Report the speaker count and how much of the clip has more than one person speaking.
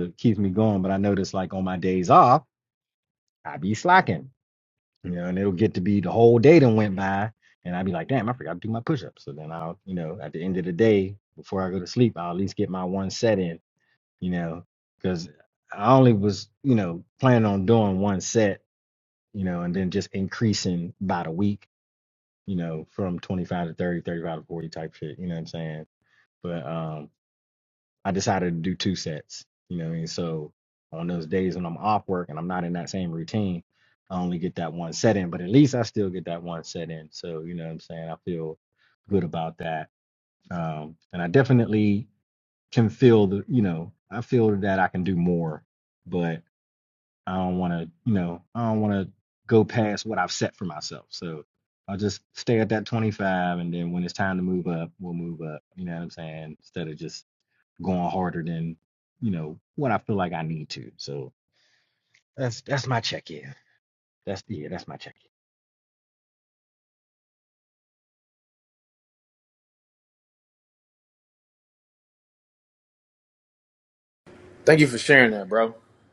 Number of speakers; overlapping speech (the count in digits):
2, no overlap